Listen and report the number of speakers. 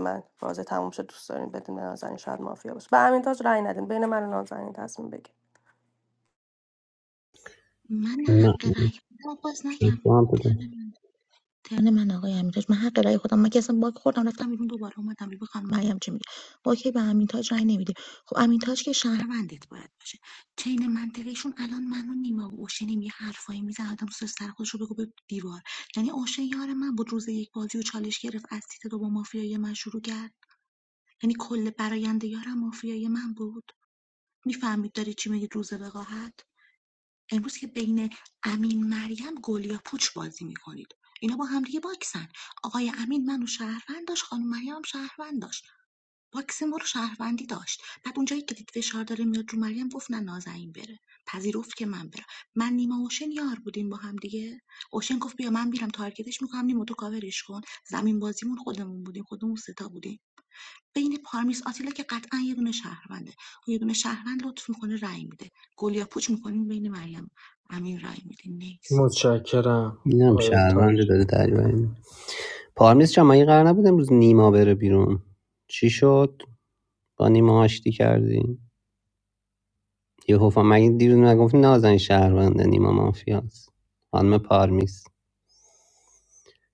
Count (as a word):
four